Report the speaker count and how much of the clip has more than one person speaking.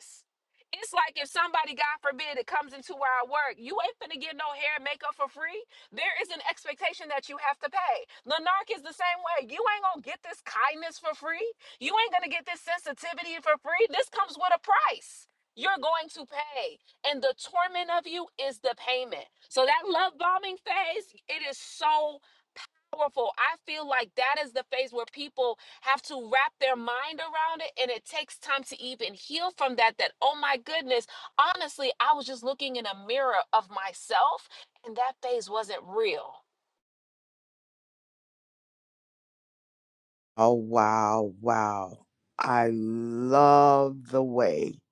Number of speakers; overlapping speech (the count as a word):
two, no overlap